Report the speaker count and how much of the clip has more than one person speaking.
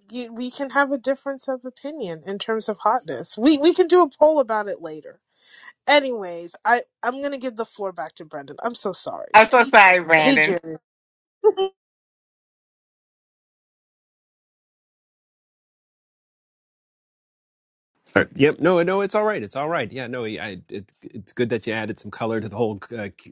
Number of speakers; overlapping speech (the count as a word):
three, about 2%